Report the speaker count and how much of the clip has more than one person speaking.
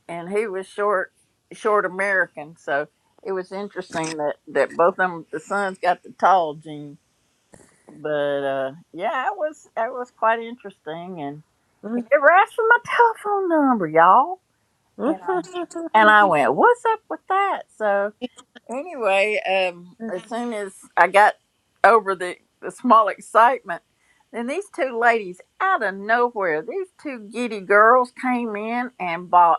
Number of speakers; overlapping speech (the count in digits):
1, no overlap